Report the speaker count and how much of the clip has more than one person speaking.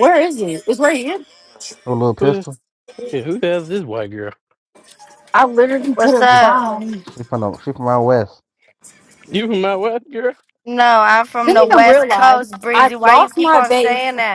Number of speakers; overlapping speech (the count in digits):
4, about 24%